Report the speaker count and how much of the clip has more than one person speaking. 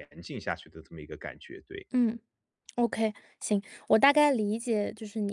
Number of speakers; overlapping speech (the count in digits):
2, no overlap